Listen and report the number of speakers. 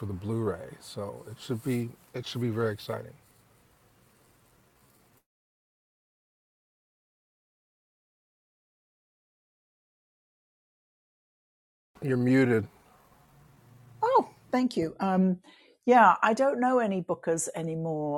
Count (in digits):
2